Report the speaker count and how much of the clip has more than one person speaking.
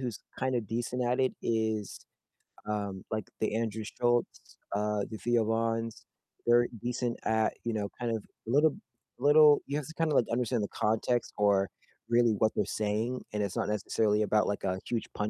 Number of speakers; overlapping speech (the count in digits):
1, no overlap